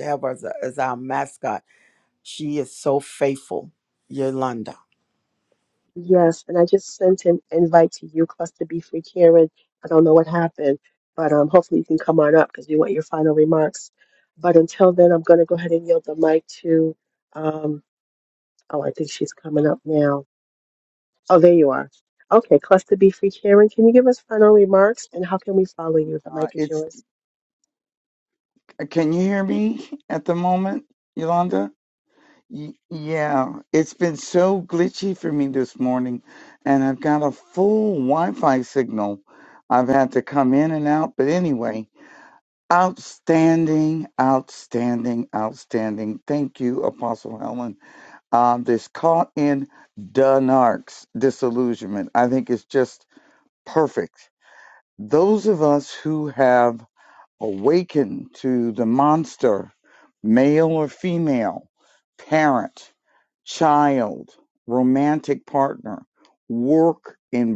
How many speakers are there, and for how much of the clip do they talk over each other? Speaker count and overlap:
3, about 1%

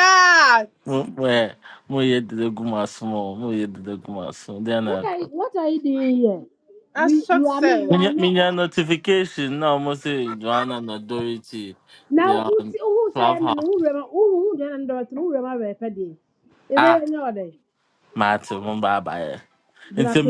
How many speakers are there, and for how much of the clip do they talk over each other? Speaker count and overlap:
3, about 17%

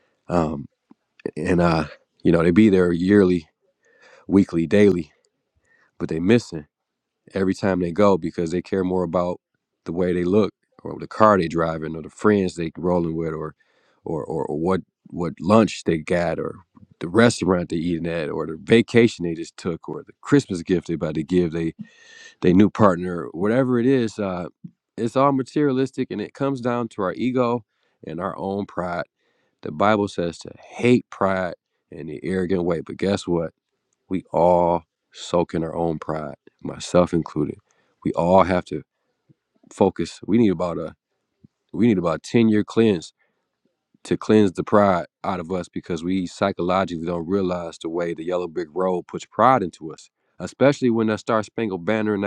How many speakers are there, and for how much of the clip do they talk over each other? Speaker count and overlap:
1, no overlap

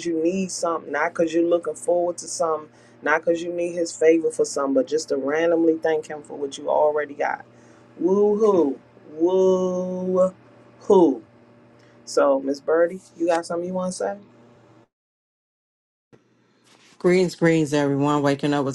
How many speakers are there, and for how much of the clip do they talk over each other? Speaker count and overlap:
2, no overlap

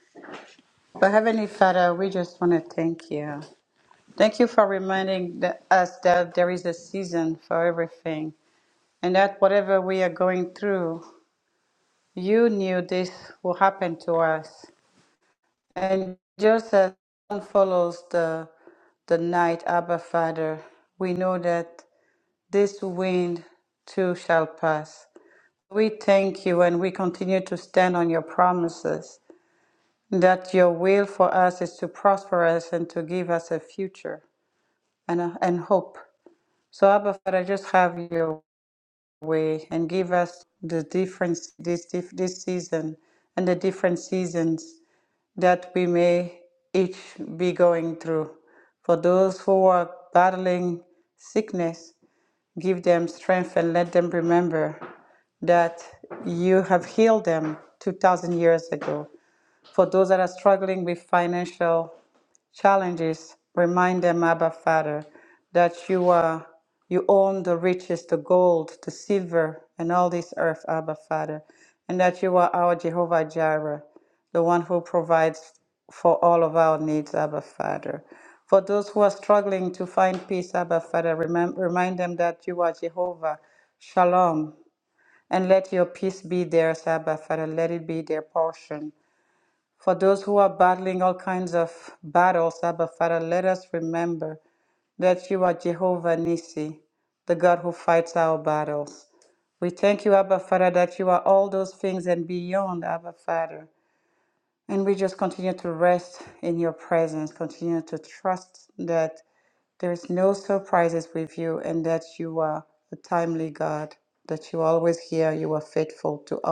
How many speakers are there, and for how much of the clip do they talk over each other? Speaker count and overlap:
1, no overlap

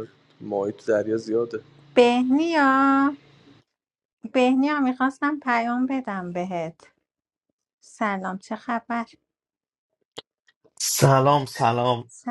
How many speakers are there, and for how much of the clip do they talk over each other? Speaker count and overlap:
3, no overlap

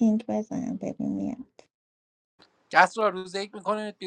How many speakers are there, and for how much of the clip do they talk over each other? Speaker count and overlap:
2, no overlap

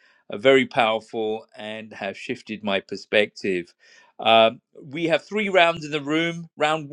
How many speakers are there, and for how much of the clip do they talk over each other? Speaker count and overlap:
1, no overlap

